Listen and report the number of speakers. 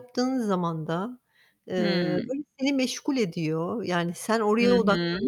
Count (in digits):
2